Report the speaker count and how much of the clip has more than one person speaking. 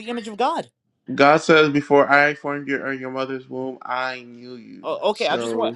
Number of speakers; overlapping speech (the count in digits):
2, about 9%